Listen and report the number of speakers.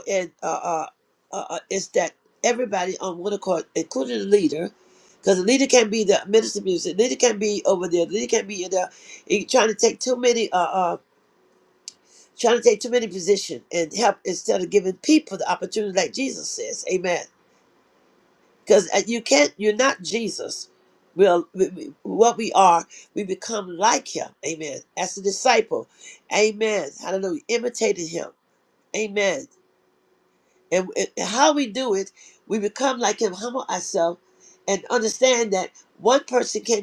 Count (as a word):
one